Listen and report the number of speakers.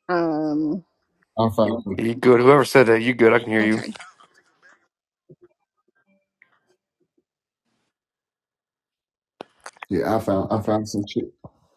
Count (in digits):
3